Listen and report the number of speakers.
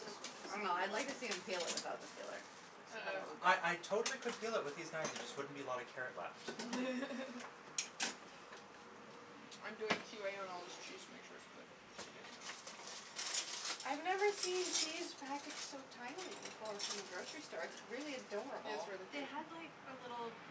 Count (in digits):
4